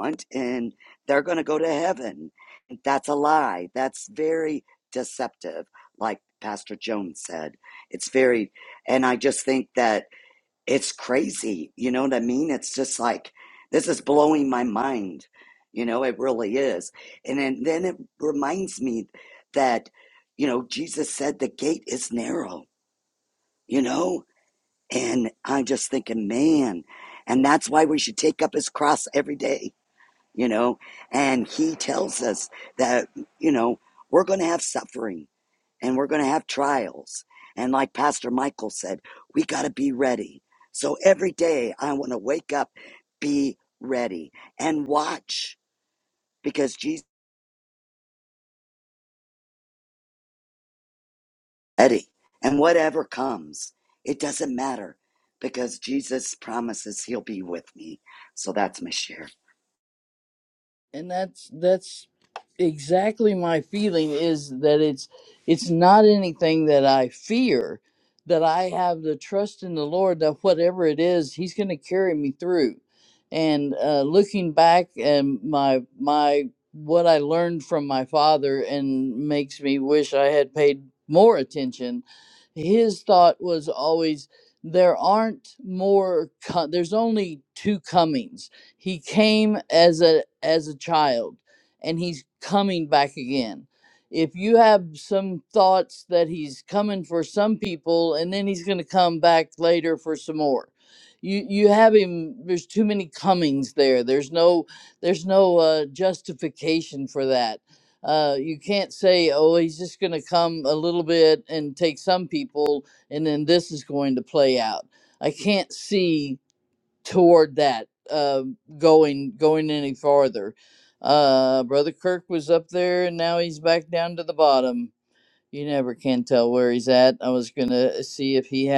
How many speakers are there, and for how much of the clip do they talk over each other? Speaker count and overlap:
2, no overlap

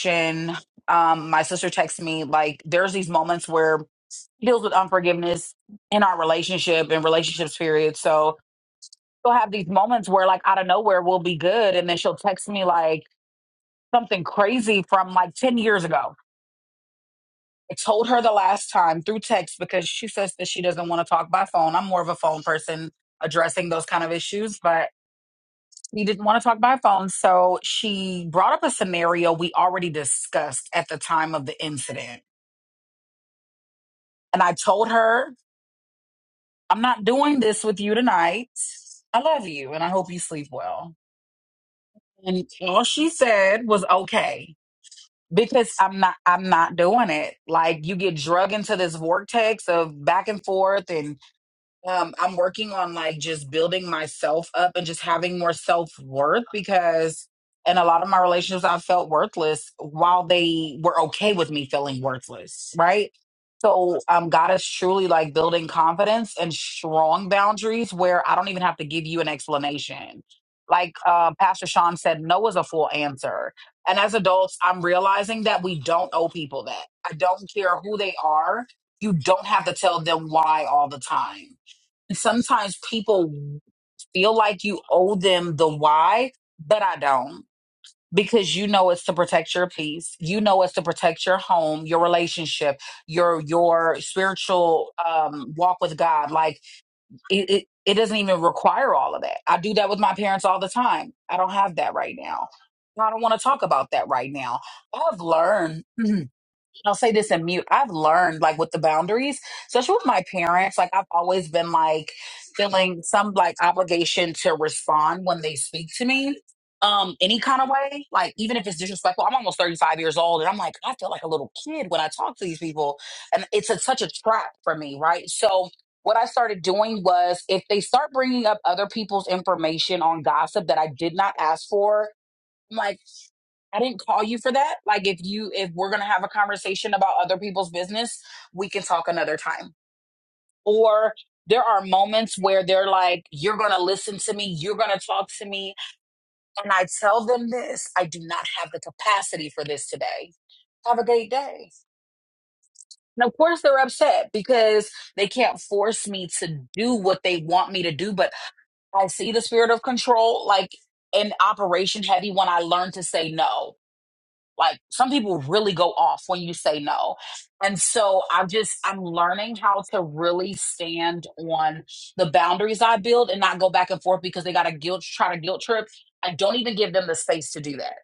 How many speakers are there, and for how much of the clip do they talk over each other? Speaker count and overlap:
1, no overlap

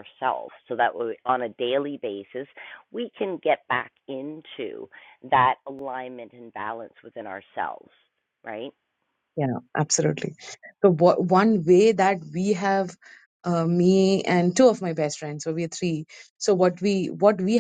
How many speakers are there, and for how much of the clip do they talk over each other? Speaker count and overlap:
2, no overlap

